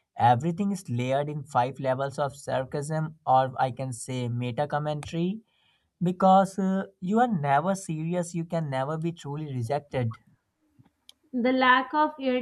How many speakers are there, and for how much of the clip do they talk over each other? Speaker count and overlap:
2, no overlap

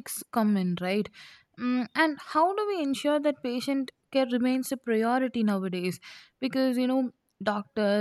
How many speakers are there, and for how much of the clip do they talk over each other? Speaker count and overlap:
1, no overlap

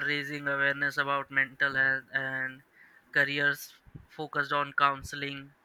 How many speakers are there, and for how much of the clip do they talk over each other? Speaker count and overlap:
1, no overlap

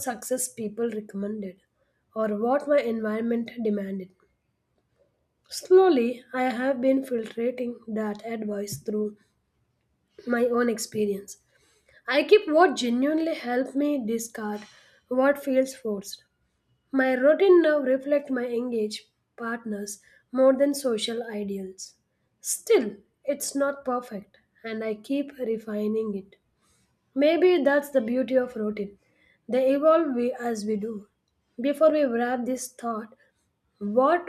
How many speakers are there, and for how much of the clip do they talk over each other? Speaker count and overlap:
1, no overlap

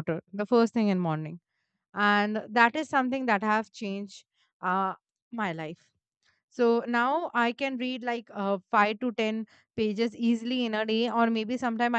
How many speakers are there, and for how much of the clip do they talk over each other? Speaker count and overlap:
1, no overlap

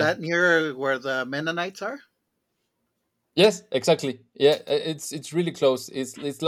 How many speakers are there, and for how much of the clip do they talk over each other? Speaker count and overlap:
2, about 1%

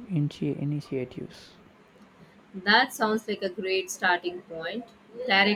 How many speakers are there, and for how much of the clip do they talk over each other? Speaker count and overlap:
2, no overlap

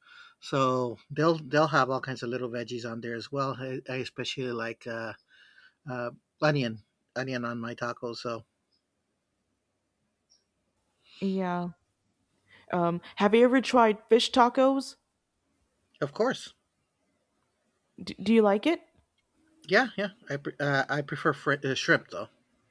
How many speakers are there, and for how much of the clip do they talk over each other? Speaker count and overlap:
2, no overlap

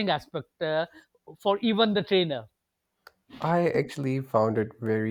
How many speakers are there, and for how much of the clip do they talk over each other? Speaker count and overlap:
2, no overlap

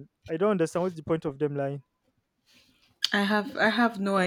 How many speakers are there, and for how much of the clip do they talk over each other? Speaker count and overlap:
2, no overlap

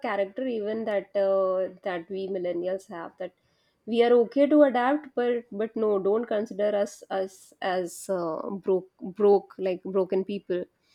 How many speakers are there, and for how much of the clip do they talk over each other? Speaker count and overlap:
1, no overlap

